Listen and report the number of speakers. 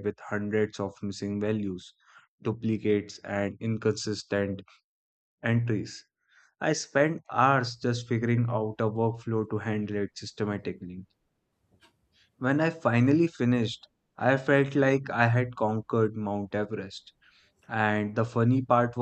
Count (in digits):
1